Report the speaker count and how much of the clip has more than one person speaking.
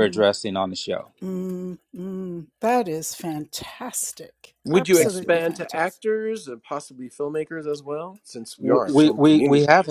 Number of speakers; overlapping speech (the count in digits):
3, about 27%